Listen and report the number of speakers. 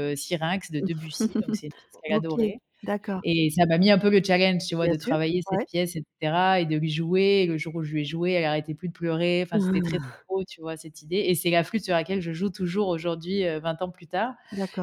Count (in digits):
2